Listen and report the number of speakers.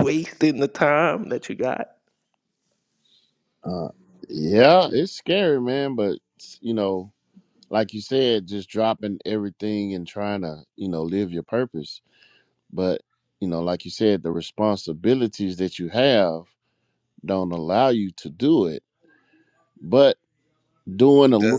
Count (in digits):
2